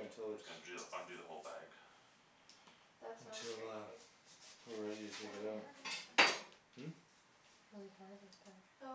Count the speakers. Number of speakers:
four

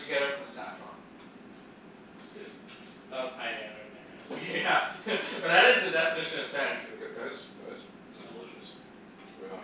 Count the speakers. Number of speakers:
three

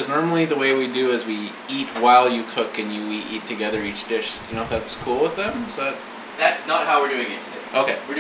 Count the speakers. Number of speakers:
two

